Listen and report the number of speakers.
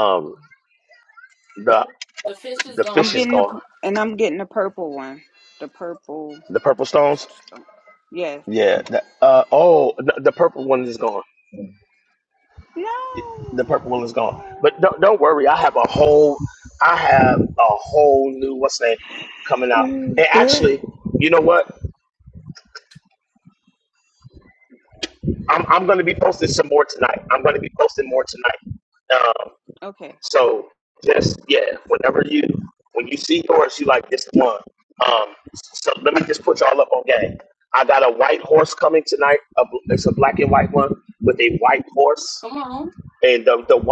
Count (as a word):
three